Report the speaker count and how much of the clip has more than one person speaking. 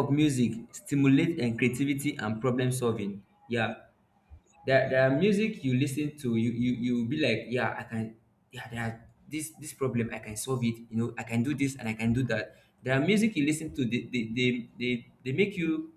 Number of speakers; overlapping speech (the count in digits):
1, no overlap